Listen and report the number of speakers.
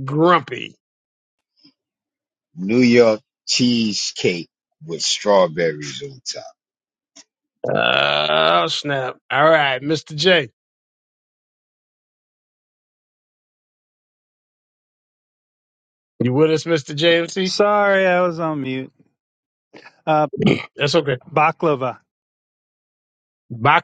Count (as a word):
three